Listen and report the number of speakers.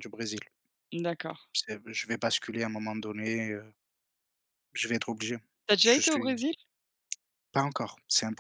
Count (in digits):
2